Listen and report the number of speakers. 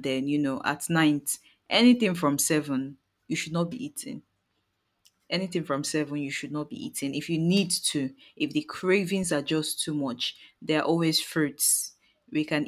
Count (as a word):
one